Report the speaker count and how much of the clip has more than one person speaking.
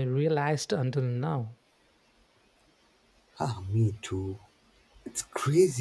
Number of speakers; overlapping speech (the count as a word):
two, no overlap